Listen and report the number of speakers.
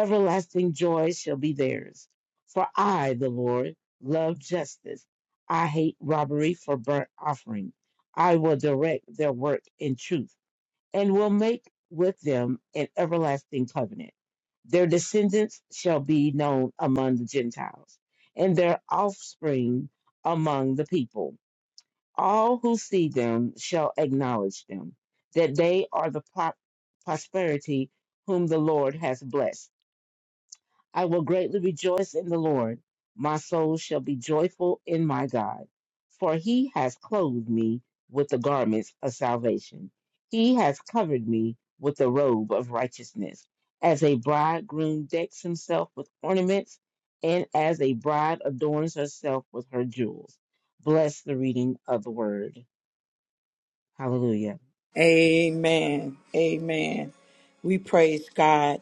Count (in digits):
2